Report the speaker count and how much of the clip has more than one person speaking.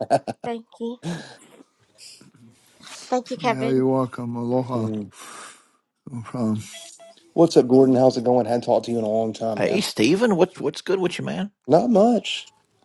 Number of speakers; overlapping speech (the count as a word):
four, about 6%